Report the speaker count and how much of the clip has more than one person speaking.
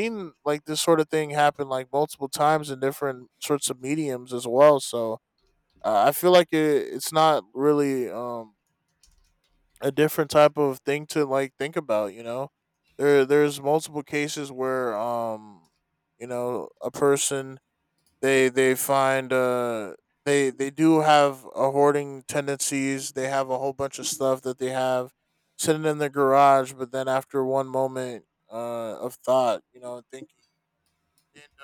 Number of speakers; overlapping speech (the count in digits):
1, no overlap